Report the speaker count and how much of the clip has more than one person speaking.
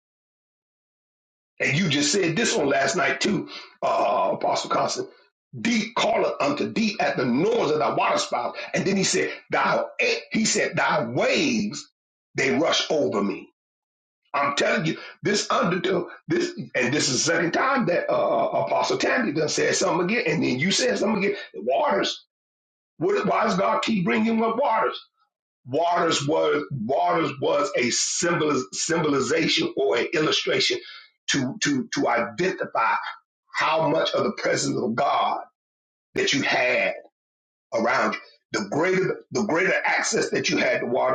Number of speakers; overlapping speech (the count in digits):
1, no overlap